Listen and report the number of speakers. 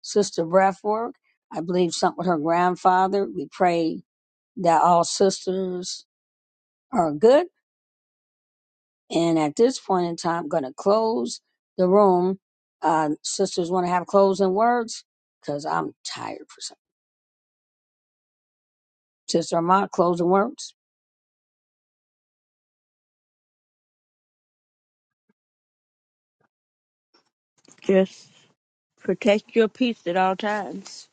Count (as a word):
two